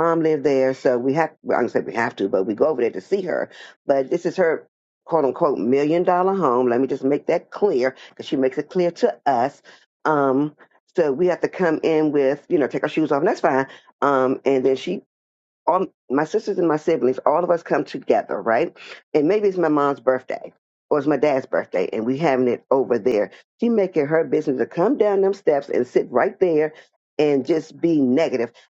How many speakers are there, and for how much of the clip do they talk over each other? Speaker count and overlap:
1, no overlap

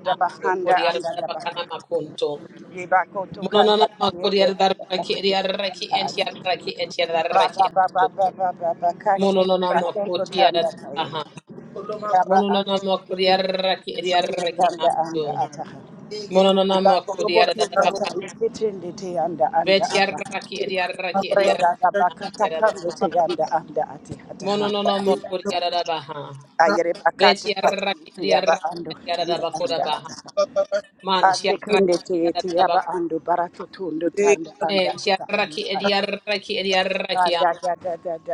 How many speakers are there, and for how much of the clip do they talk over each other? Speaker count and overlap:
2, about 44%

